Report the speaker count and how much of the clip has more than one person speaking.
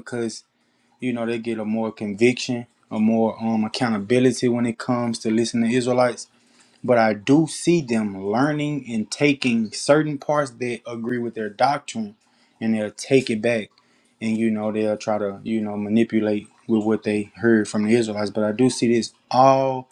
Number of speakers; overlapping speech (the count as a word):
one, no overlap